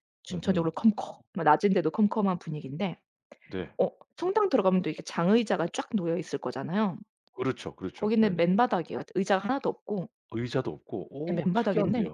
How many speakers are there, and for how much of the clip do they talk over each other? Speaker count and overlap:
2, about 13%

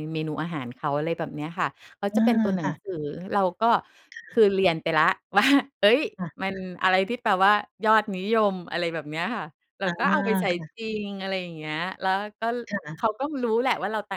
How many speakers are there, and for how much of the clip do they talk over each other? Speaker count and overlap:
2, about 10%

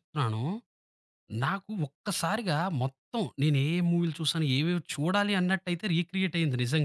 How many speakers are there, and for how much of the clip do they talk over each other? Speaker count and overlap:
1, no overlap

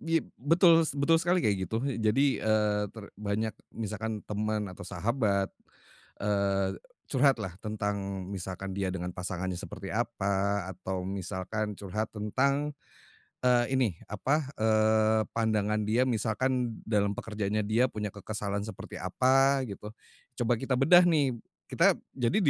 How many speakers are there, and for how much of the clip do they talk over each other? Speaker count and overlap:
1, no overlap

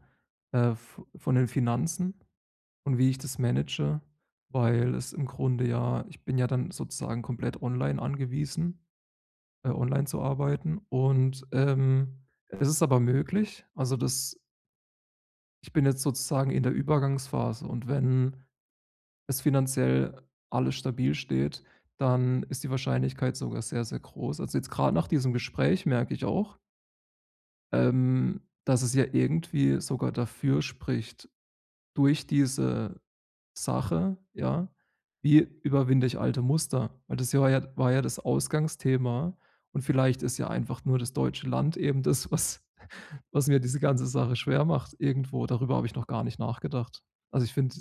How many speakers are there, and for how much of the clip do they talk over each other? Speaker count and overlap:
1, no overlap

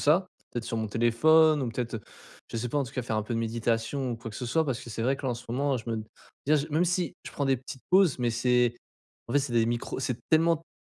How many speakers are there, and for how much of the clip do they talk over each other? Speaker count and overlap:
1, no overlap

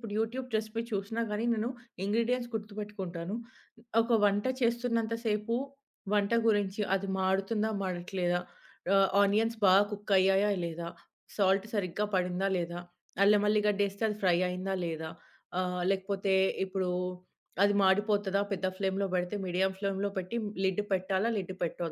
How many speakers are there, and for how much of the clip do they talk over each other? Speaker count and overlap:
1, no overlap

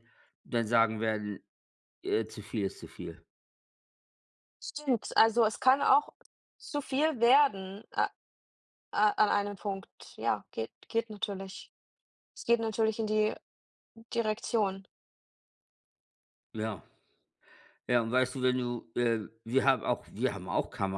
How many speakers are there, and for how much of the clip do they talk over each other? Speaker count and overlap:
2, no overlap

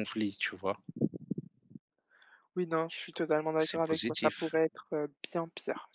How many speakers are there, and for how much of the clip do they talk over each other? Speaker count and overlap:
2, about 16%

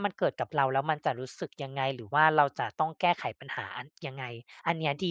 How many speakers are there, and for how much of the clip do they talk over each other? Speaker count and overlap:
1, no overlap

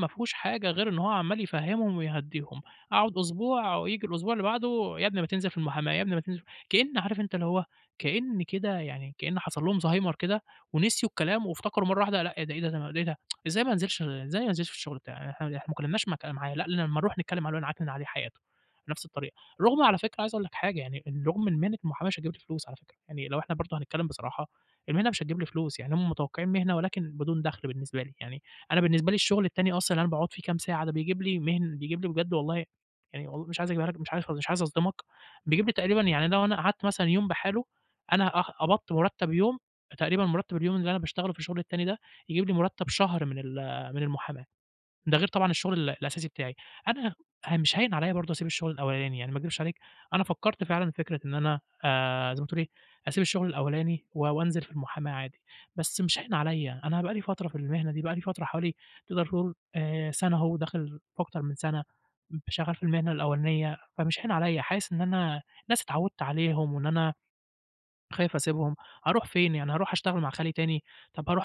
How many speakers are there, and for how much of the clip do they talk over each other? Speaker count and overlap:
1, no overlap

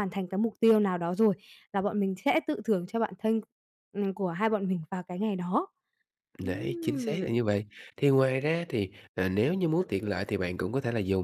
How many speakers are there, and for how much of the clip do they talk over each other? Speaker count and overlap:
2, about 8%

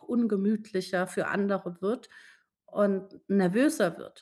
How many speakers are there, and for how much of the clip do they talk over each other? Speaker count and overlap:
1, no overlap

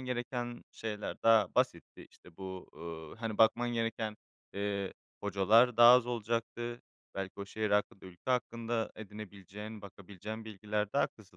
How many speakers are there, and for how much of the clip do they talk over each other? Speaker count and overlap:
1, no overlap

